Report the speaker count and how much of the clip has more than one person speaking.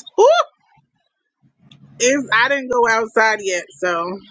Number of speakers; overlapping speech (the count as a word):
one, no overlap